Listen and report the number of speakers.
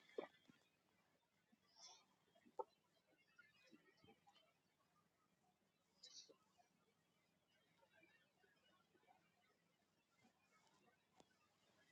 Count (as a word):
zero